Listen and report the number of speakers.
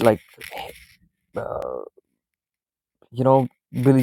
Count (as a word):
one